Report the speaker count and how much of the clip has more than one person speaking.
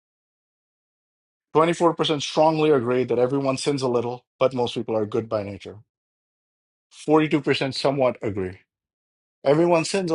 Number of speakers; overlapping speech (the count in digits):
1, no overlap